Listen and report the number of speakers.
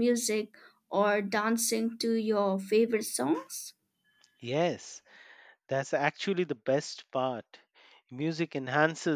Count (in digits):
2